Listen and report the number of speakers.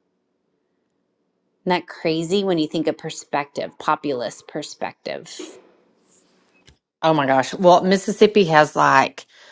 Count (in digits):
2